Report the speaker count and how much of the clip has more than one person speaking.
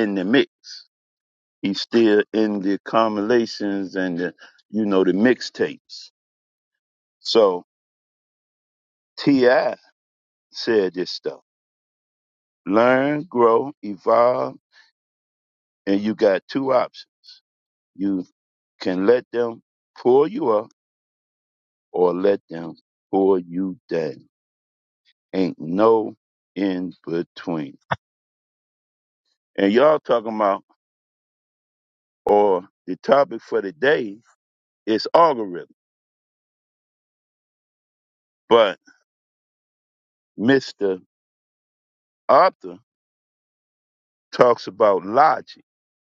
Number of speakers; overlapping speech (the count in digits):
1, no overlap